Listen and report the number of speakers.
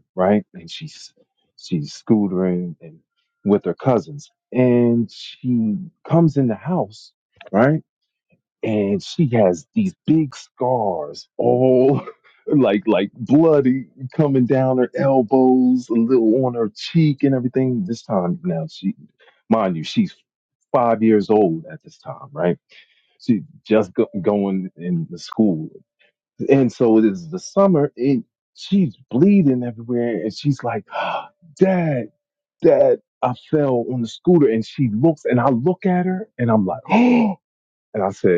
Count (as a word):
one